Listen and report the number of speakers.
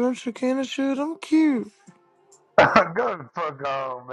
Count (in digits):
2